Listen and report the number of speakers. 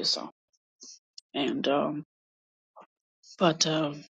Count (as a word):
one